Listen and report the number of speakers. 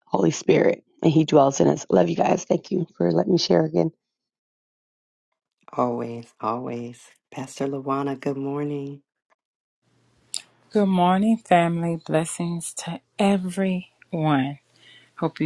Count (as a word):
three